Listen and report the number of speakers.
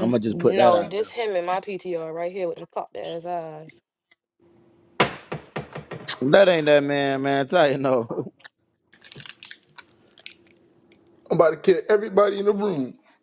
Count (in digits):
3